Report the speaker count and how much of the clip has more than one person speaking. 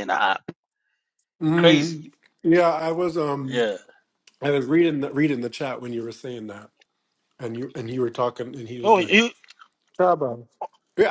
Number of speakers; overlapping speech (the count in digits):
2, about 6%